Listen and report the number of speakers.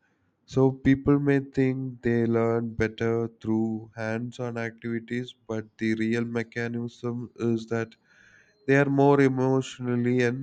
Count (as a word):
one